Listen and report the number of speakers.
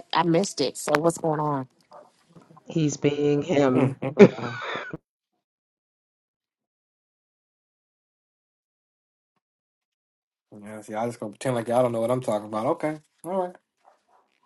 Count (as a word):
three